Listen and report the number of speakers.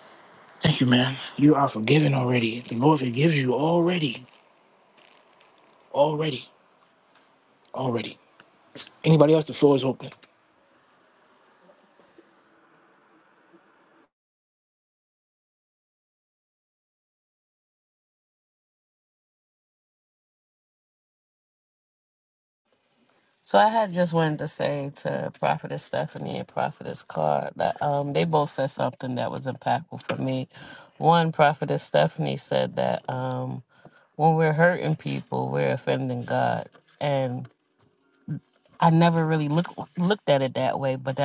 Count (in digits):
2